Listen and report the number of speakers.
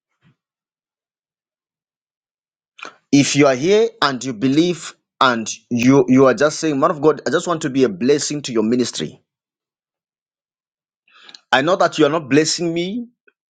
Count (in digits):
1